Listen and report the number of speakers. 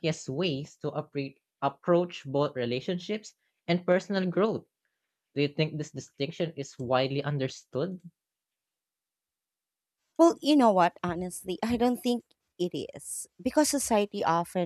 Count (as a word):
two